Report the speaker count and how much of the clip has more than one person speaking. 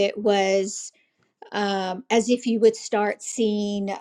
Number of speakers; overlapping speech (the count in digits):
1, no overlap